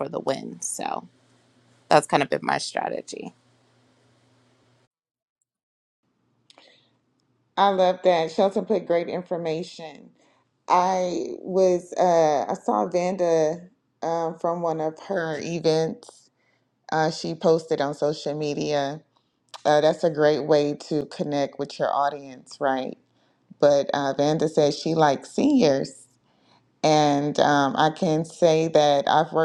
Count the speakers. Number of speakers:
2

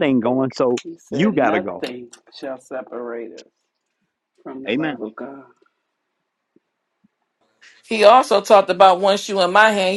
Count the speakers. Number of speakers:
3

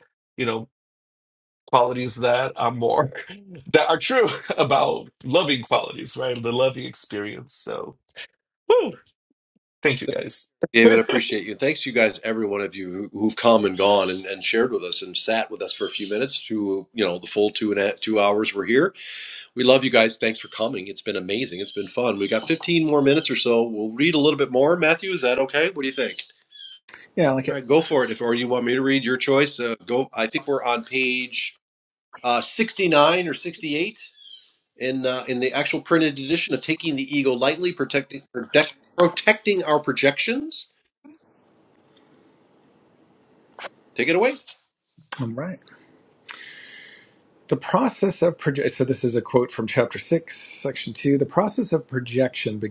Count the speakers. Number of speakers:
3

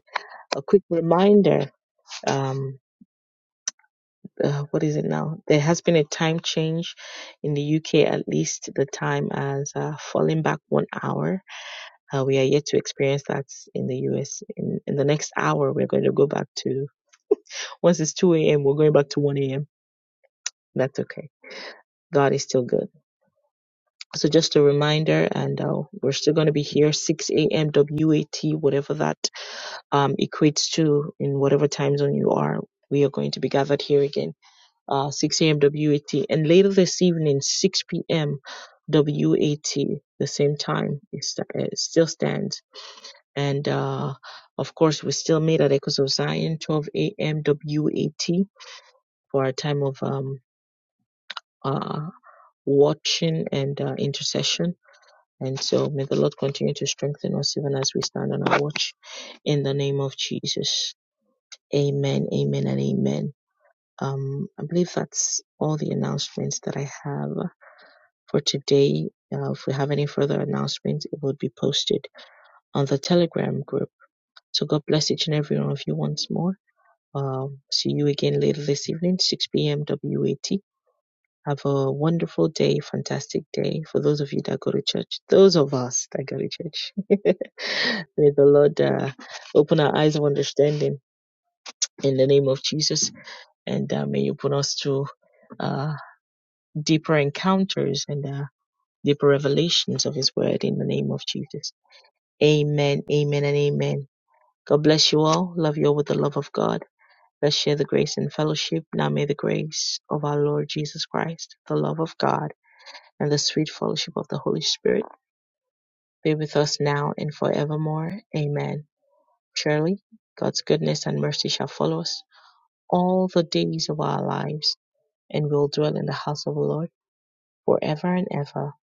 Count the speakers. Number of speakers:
1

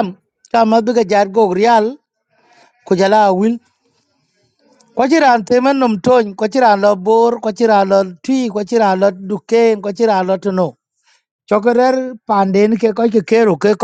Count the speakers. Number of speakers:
1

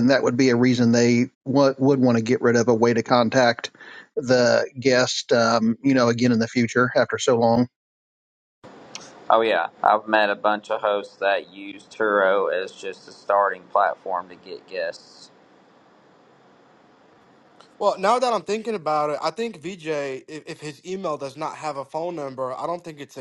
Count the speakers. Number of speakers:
3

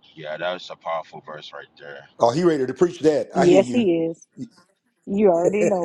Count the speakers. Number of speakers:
3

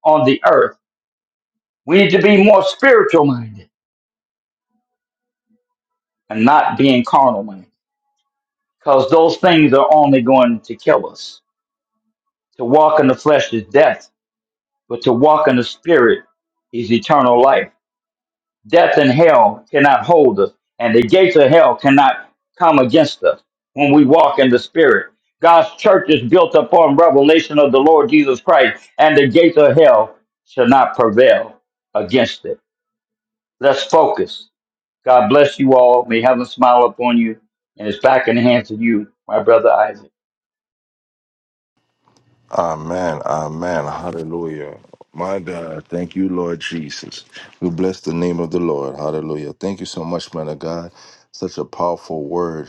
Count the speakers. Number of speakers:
2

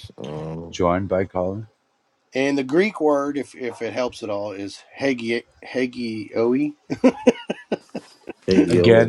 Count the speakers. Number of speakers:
3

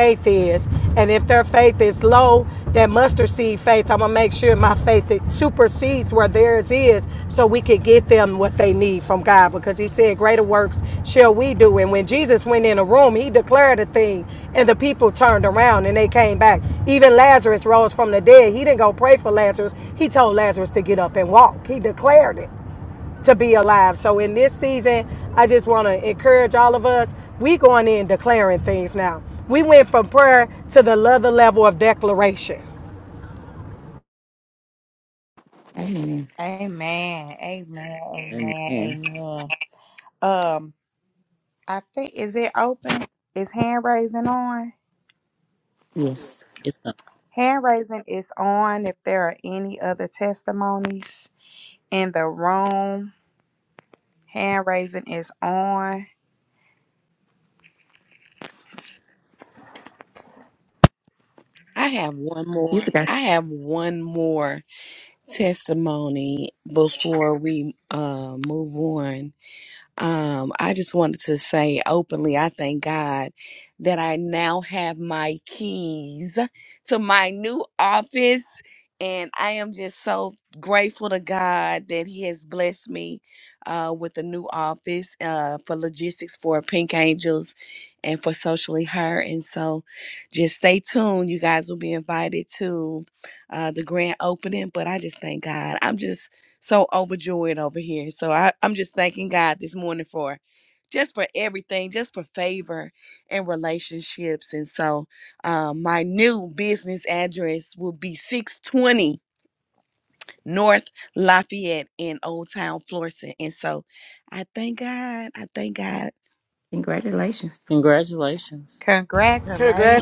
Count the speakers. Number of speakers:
5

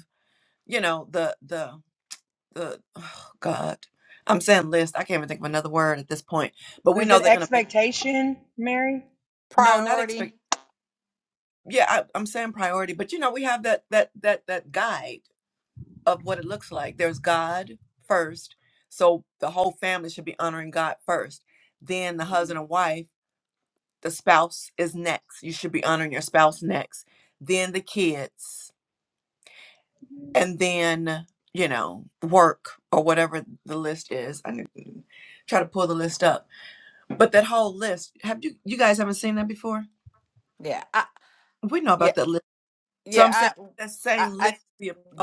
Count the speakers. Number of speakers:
3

